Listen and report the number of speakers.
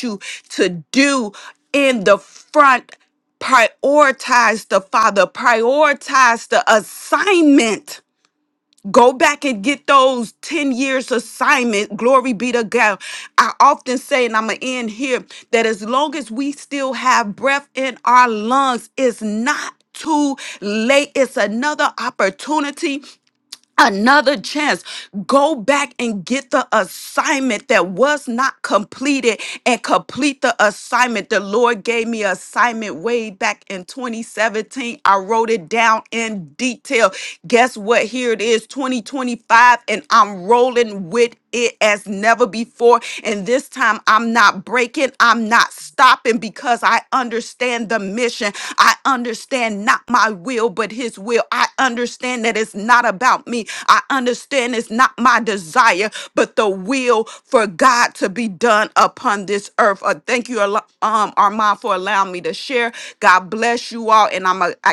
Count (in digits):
1